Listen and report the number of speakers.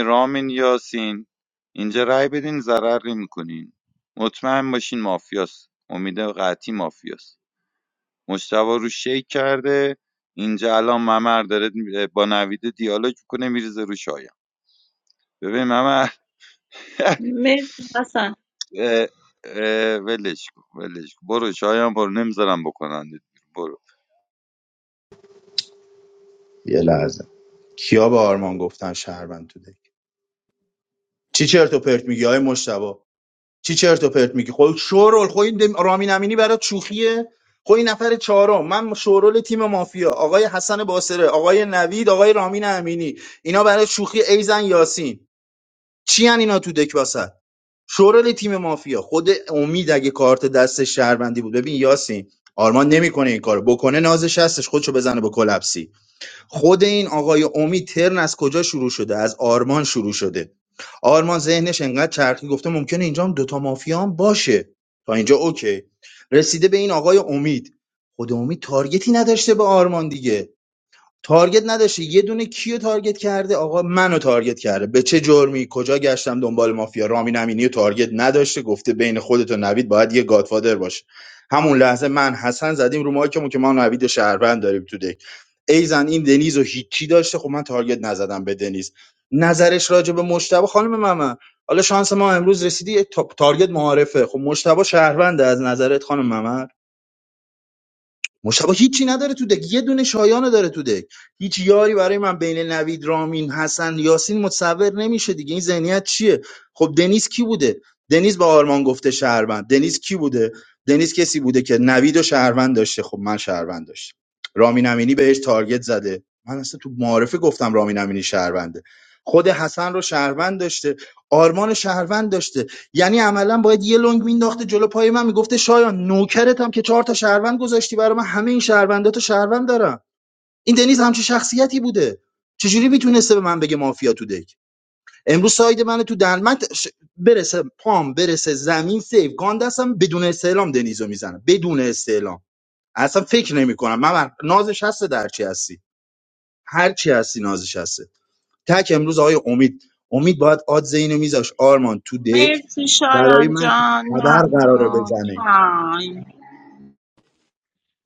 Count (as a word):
three